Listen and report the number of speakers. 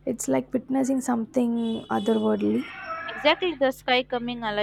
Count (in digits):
2